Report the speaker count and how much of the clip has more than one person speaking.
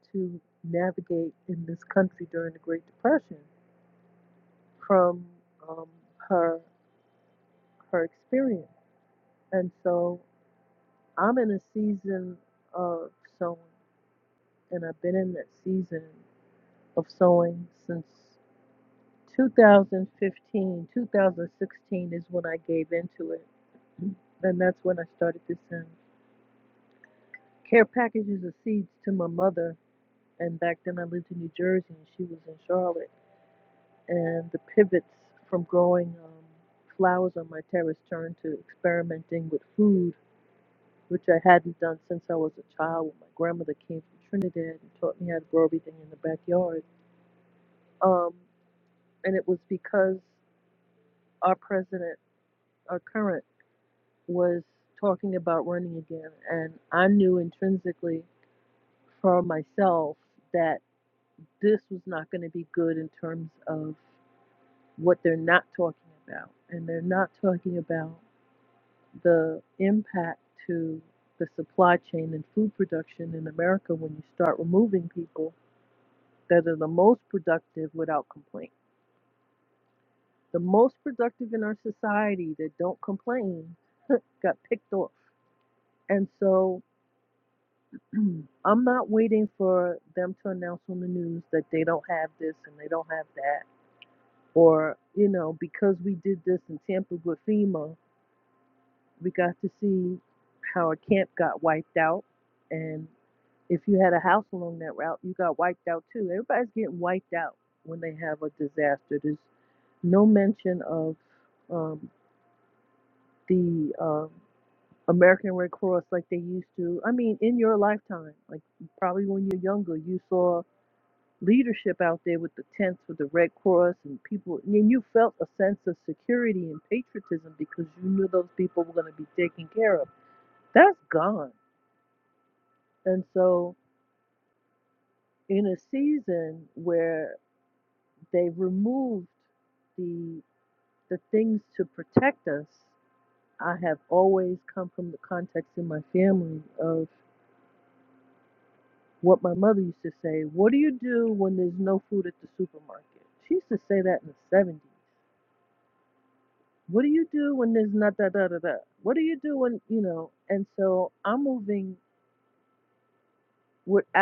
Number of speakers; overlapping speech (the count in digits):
1, no overlap